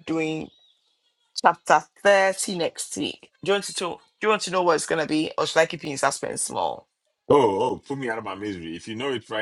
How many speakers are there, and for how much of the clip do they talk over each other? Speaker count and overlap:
2, no overlap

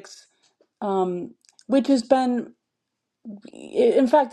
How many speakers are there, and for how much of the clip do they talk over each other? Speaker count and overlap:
1, no overlap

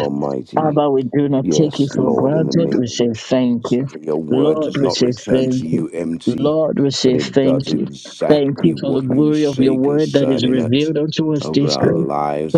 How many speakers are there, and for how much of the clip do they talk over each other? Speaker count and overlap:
2, about 70%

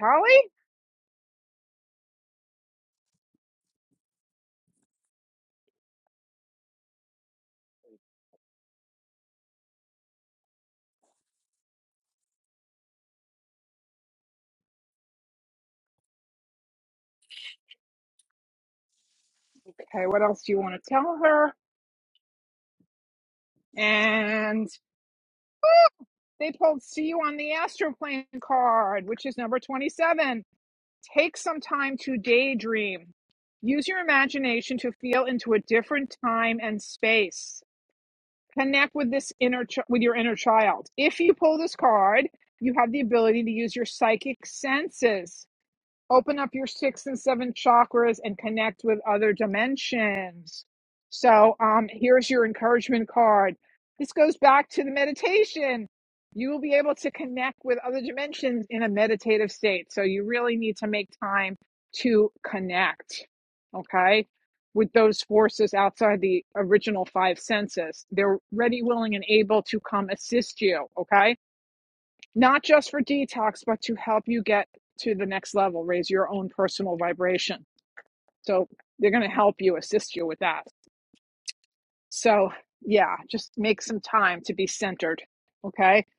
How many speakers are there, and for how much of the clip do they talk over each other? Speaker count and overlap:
1, no overlap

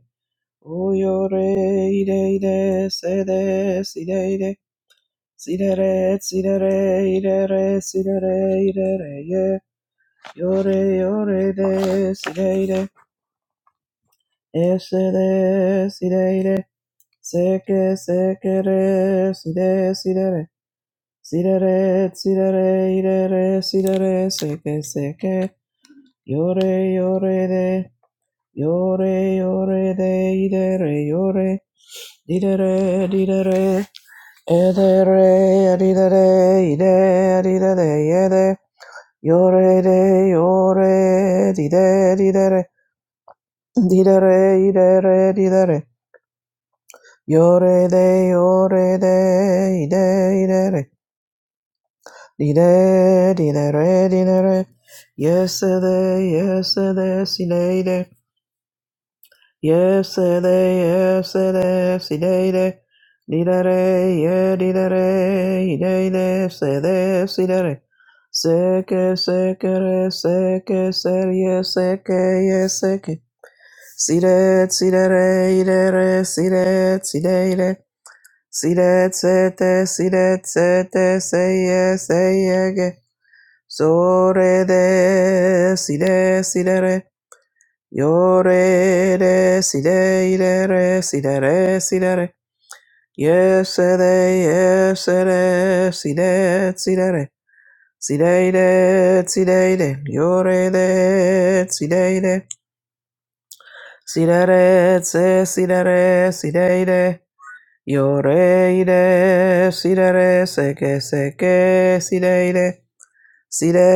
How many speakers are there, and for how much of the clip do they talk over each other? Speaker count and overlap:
1, no overlap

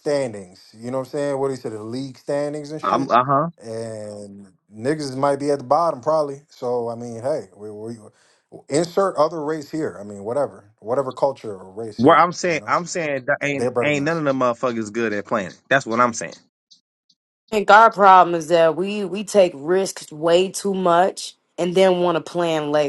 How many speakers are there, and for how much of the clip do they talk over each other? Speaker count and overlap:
3, about 7%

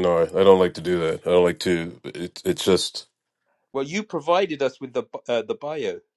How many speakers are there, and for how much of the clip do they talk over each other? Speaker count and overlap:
2, no overlap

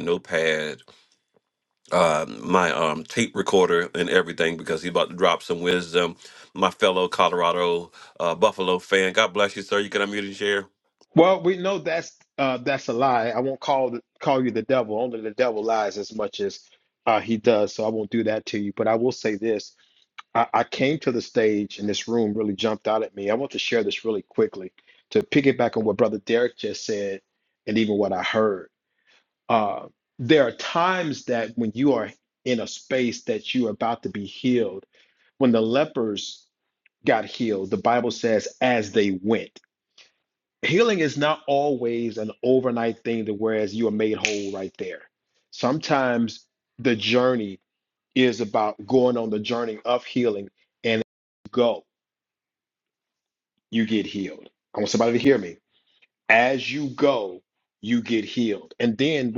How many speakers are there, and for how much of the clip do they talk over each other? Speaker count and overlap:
2, no overlap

